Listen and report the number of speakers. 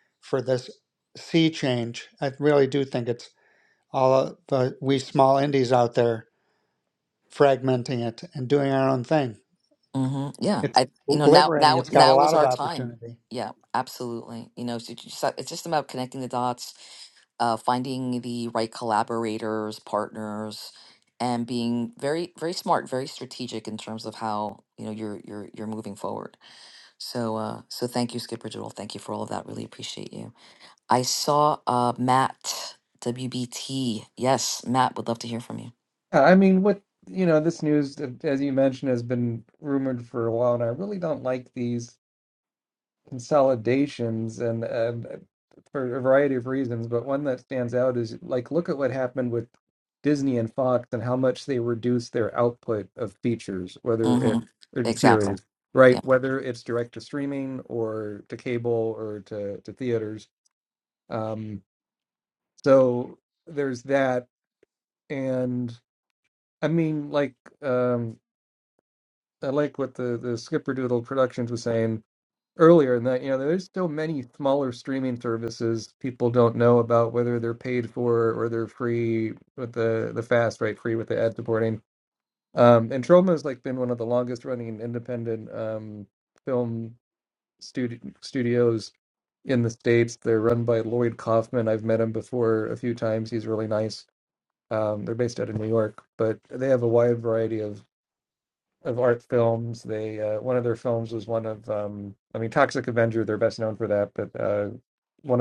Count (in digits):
3